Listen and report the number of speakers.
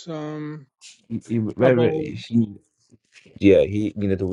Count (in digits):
2